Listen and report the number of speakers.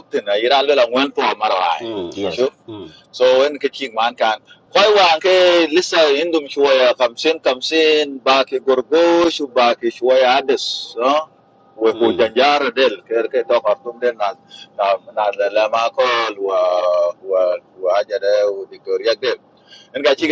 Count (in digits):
2